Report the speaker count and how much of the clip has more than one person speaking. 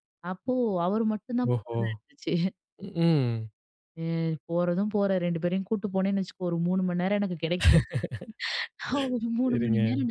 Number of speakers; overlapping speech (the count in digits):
2, about 7%